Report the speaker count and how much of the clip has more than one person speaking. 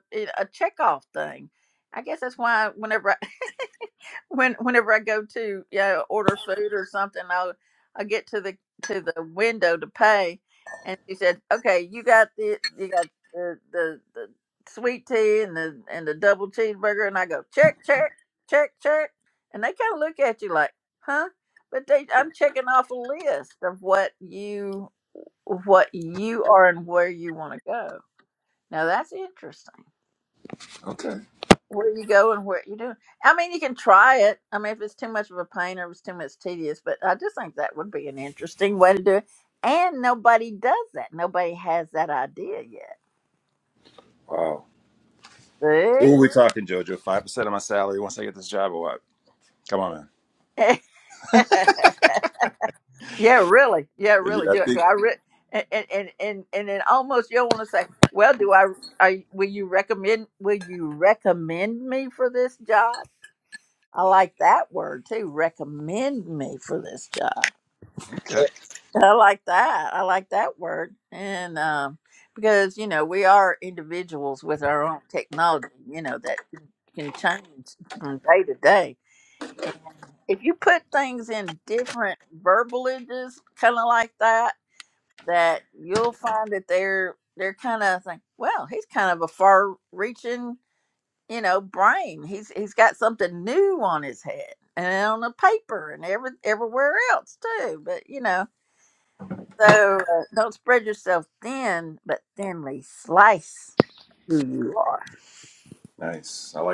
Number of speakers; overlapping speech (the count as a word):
two, about 1%